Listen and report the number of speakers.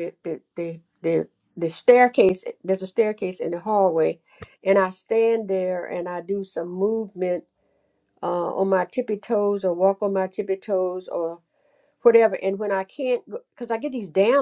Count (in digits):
1